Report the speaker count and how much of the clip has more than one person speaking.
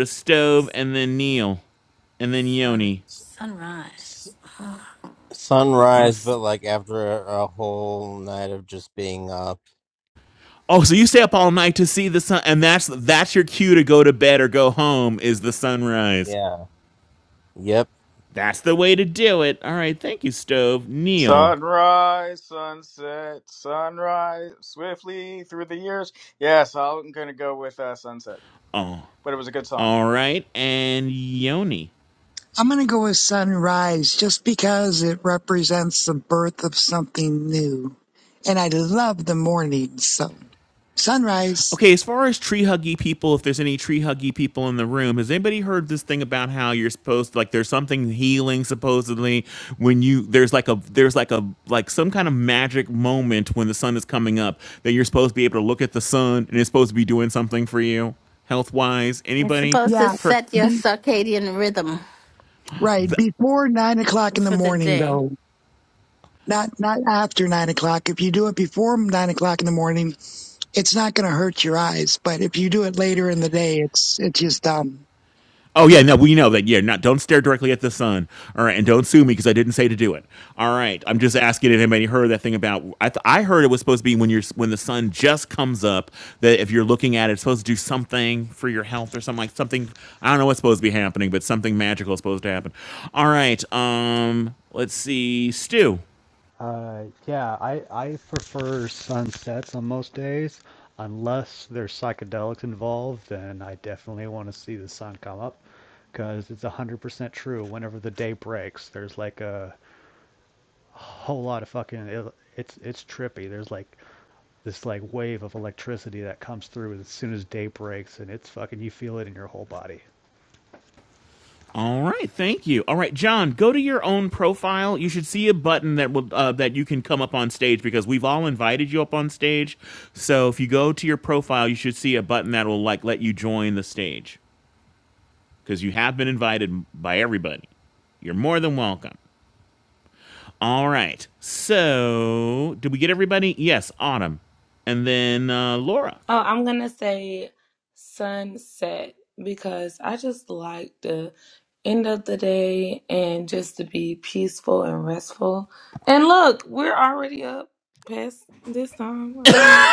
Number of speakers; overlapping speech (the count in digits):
7, about 2%